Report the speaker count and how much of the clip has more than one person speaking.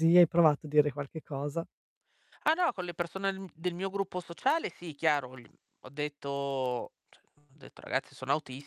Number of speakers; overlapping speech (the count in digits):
2, no overlap